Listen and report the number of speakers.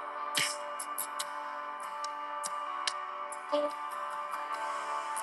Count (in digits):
0